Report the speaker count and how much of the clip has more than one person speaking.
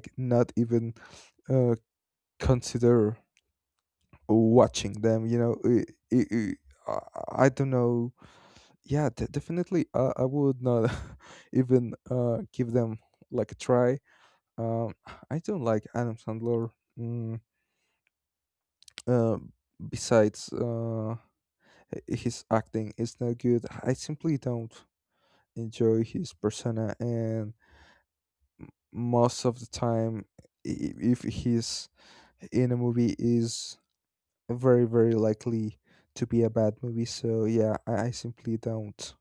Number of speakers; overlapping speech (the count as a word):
one, no overlap